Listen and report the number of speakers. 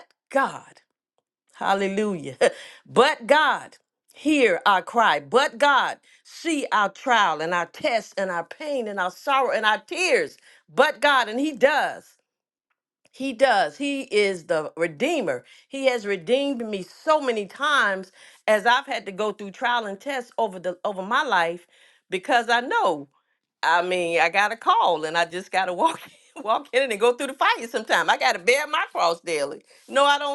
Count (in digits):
1